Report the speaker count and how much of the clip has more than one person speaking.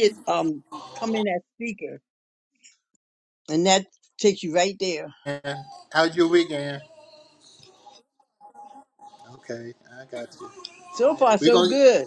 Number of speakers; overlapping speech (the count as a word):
two, about 5%